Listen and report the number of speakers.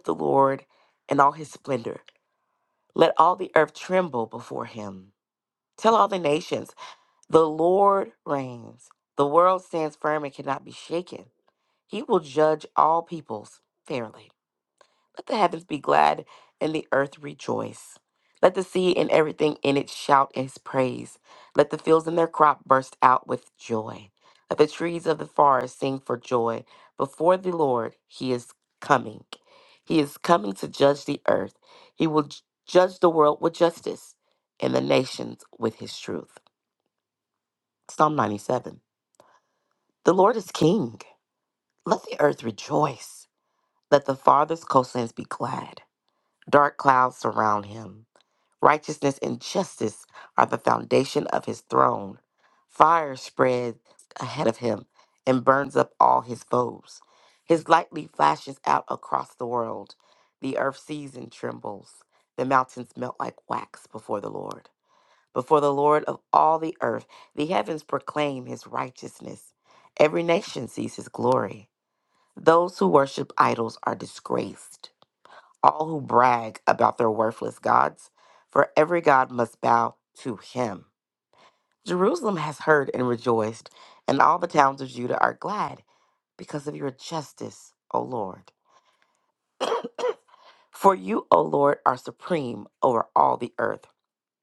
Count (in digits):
1